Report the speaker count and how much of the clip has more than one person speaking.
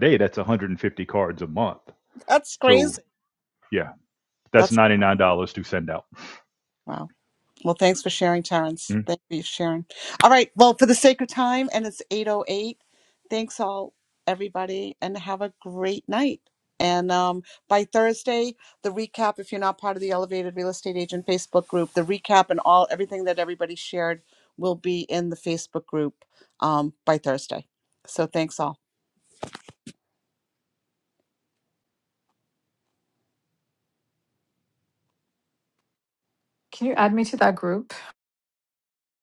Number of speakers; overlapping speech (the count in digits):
3, about 1%